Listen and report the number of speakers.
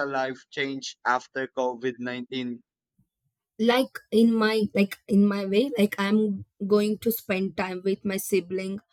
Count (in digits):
2